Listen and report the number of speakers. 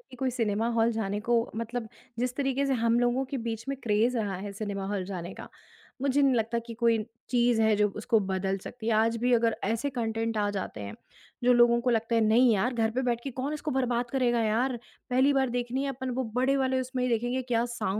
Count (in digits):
1